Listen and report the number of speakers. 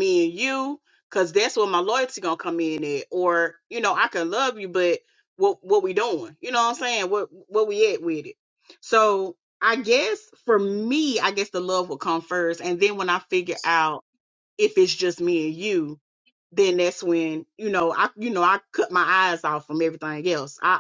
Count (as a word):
one